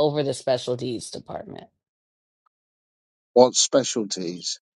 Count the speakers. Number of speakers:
two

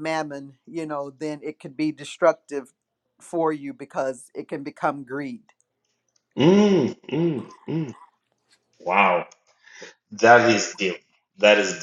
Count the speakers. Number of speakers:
two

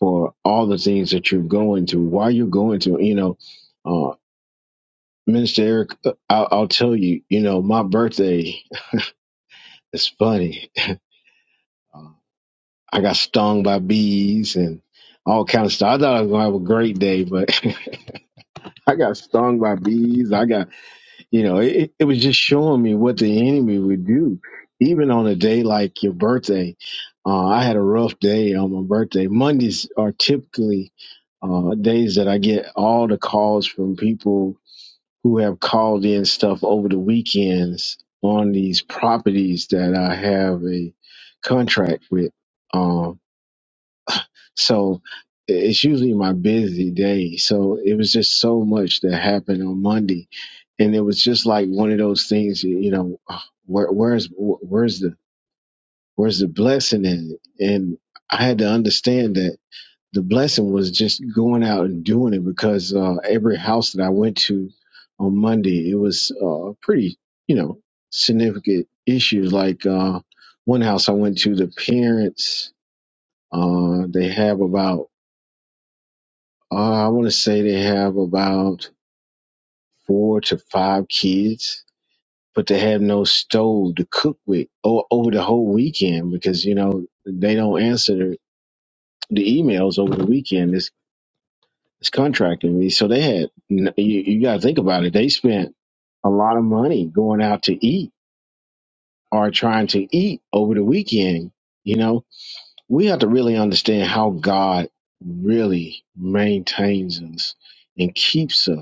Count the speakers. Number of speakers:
one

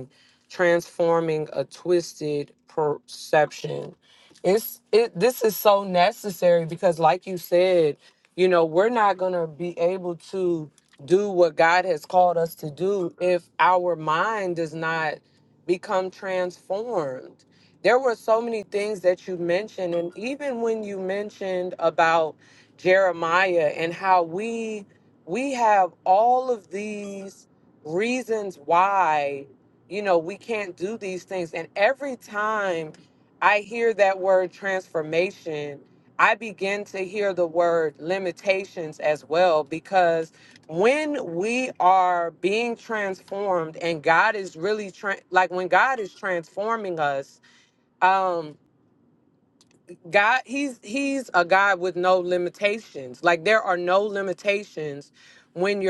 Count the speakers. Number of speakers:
one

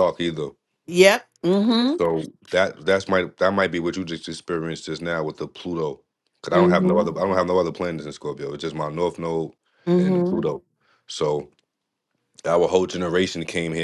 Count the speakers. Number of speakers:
two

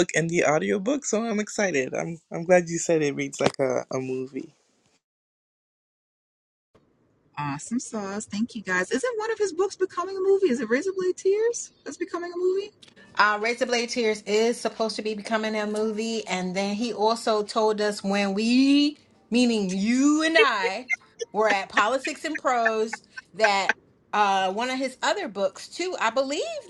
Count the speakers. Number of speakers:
three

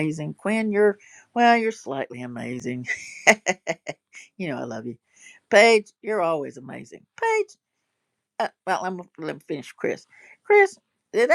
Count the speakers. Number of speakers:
one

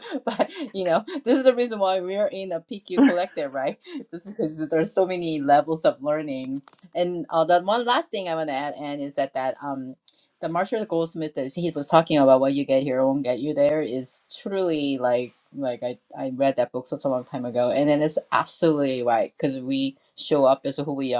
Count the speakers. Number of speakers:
one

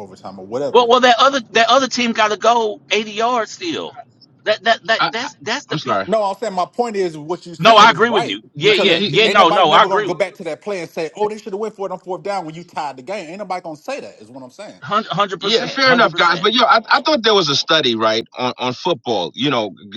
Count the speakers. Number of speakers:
three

